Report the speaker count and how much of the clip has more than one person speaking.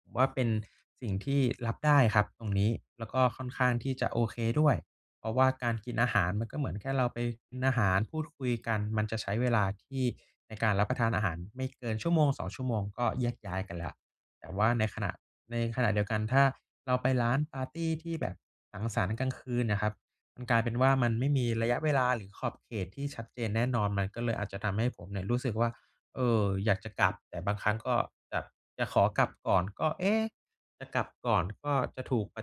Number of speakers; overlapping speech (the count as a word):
one, no overlap